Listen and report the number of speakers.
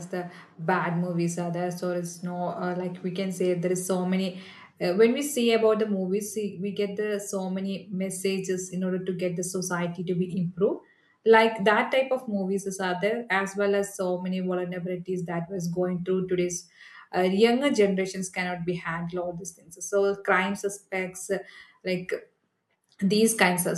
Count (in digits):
1